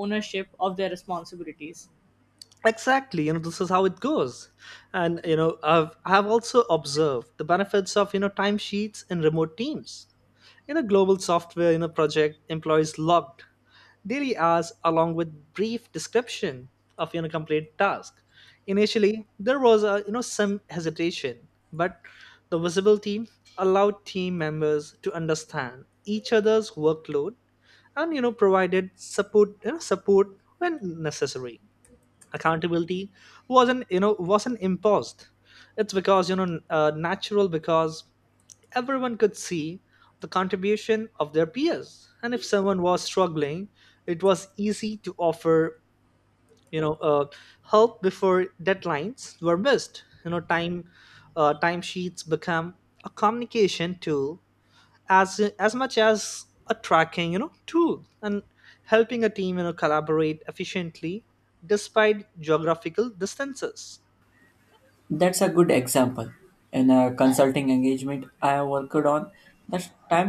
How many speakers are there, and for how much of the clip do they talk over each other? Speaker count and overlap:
3, no overlap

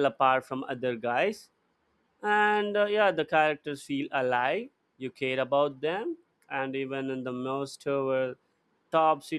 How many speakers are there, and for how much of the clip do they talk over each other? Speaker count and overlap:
1, no overlap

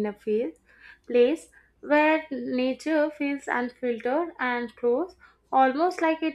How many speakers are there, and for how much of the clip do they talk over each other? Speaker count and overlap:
1, no overlap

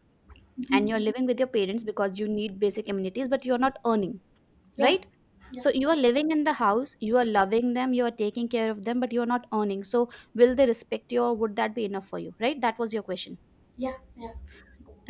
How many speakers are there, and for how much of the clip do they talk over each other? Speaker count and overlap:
2, about 3%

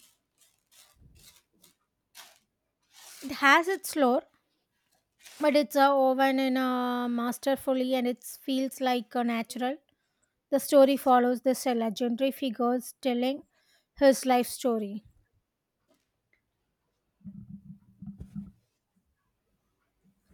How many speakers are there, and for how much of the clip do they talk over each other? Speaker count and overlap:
1, no overlap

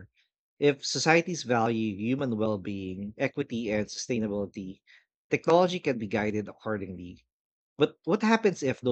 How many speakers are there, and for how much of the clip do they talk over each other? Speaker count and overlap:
1, no overlap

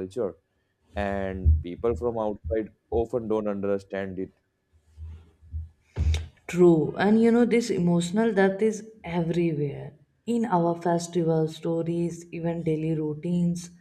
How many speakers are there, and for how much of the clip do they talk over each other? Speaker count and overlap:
2, no overlap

